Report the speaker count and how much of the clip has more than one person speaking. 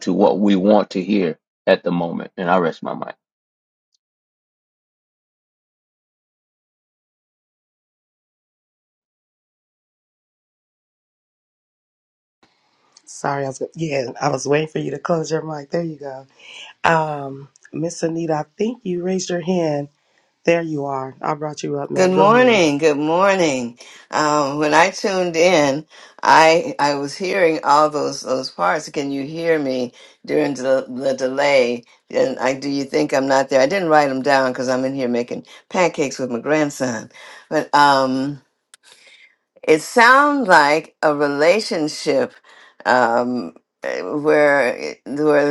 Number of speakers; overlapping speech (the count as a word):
three, about 2%